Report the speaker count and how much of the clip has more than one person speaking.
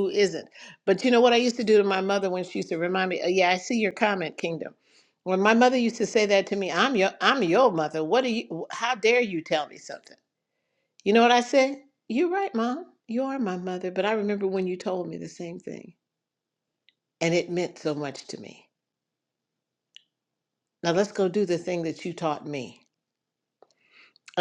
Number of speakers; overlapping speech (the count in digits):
1, no overlap